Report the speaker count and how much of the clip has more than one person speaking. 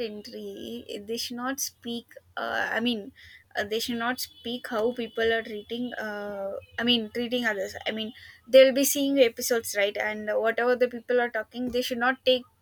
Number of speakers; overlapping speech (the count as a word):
one, no overlap